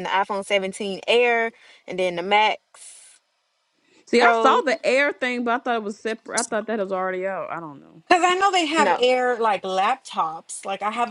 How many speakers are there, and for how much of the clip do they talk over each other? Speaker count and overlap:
3, about 6%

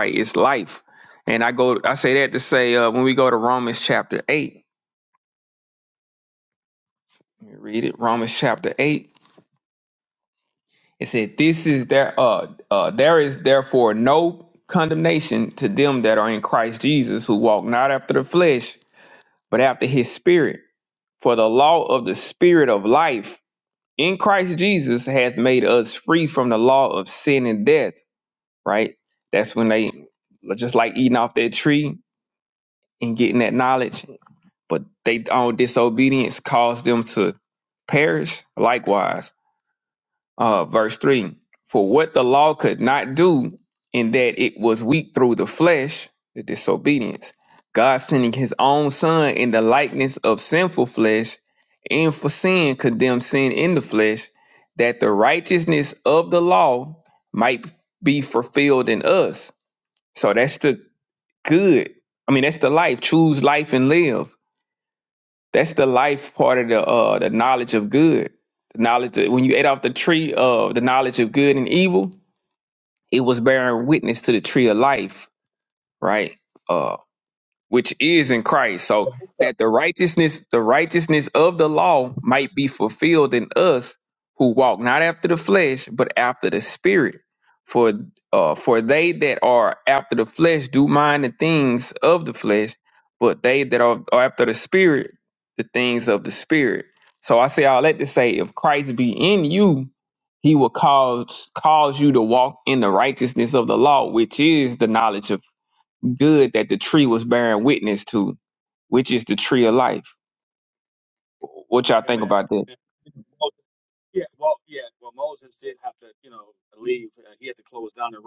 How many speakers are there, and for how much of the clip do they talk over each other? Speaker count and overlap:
2, under 1%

